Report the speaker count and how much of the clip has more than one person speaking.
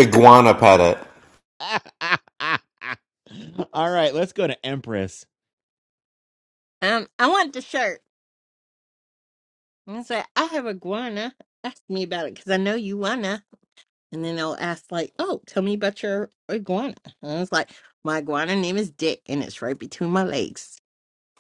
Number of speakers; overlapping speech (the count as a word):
three, no overlap